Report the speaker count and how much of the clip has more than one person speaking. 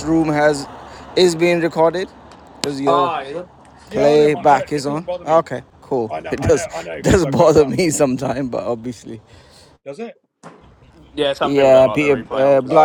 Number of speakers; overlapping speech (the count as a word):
three, about 35%